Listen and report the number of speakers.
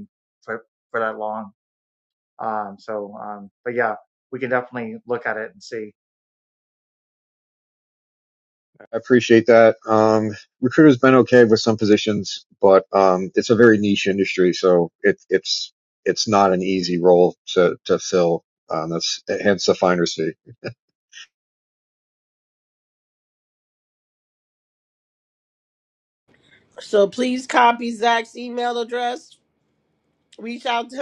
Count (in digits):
3